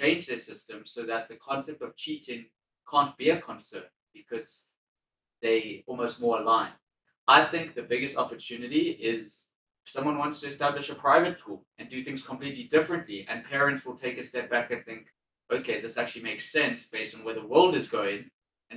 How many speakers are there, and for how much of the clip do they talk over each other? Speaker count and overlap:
1, no overlap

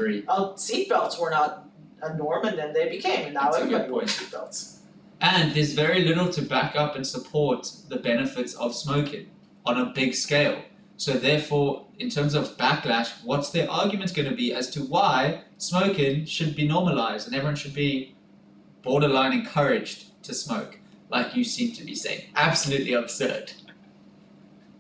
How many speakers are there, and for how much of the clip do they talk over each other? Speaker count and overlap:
2, about 3%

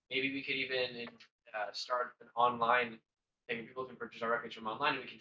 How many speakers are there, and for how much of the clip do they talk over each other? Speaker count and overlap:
1, no overlap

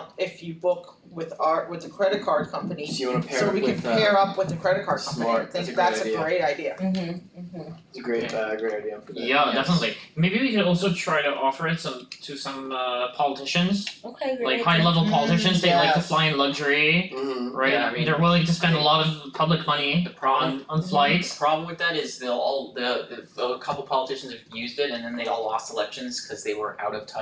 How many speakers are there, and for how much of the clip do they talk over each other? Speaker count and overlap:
5, about 23%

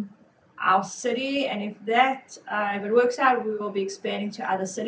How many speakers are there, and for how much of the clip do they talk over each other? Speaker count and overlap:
1, no overlap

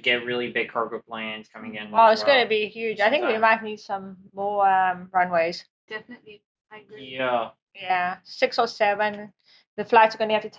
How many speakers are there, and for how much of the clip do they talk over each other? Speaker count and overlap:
3, about 14%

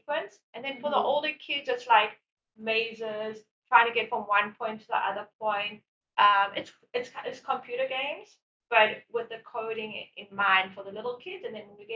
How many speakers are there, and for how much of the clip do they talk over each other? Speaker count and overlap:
1, no overlap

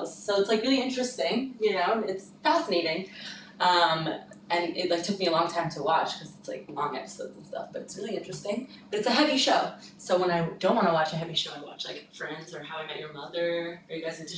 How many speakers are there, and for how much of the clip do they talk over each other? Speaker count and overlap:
1, no overlap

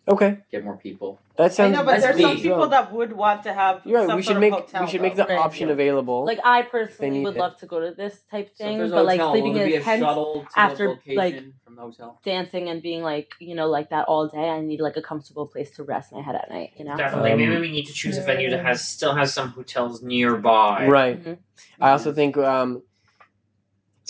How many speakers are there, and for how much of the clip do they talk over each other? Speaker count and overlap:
5, about 37%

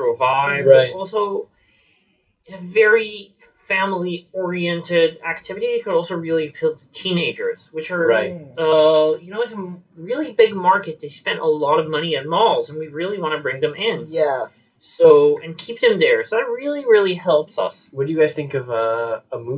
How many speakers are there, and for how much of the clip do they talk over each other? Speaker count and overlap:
3, about 4%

